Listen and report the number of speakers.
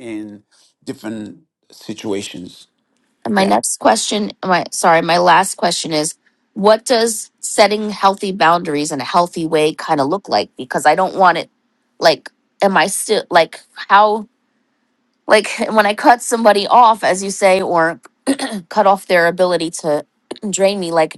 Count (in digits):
2